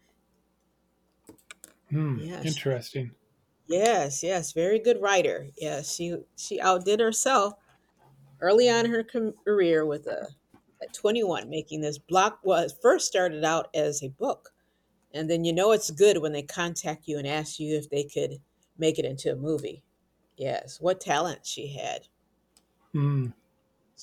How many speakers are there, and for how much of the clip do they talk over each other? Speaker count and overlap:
2, about 2%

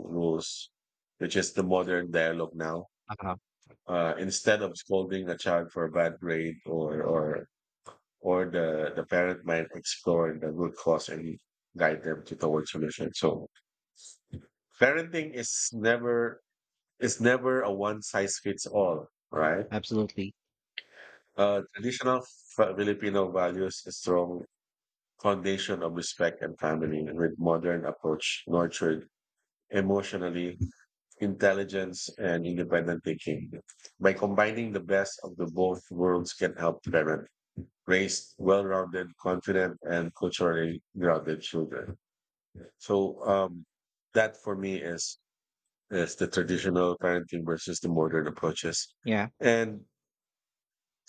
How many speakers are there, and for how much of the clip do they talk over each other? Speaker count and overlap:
2, no overlap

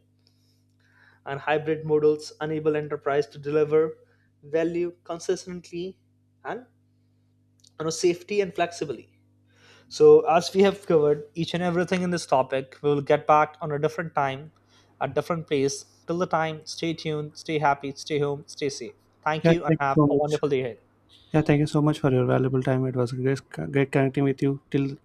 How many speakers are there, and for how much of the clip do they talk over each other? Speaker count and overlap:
2, about 4%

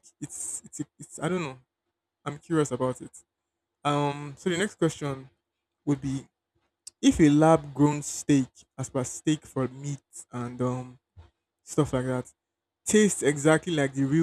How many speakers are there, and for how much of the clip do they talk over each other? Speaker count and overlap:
1, no overlap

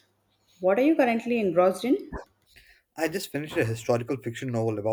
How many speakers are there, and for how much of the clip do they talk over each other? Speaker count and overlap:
2, no overlap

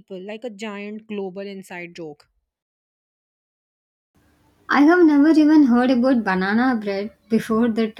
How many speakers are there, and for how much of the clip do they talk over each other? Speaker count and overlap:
2, no overlap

